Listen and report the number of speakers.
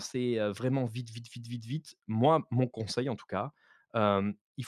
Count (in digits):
1